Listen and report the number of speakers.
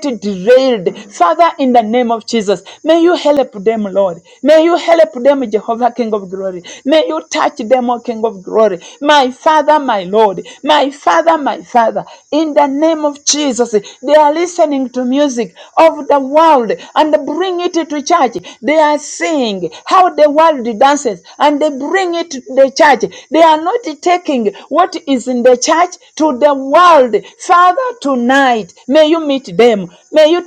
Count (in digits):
1